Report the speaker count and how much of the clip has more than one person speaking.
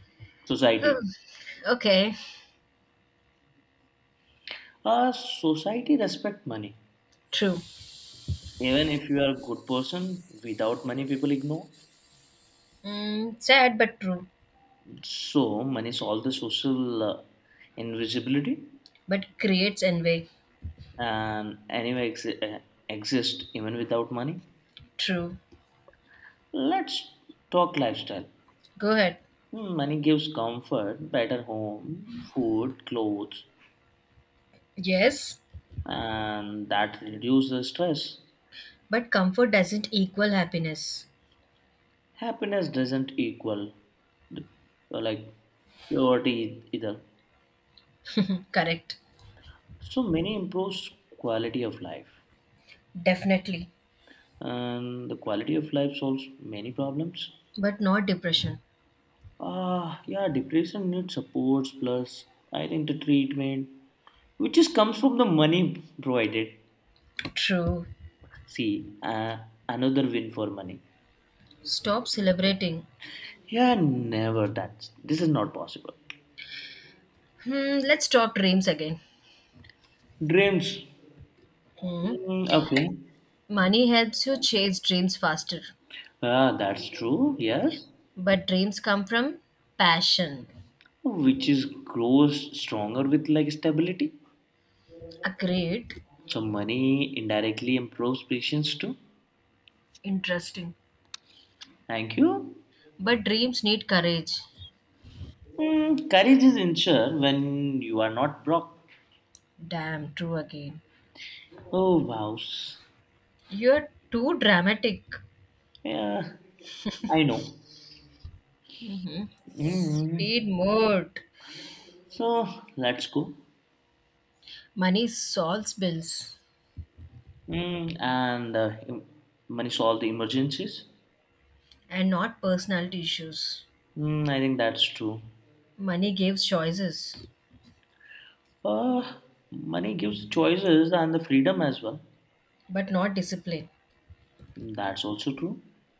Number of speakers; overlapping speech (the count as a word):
two, under 1%